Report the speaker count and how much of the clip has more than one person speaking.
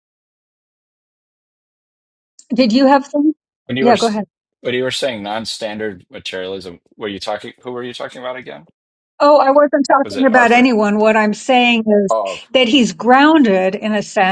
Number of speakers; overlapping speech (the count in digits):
2, about 6%